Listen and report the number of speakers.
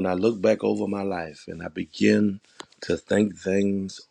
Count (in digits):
1